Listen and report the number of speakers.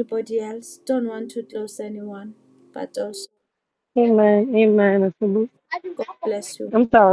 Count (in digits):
2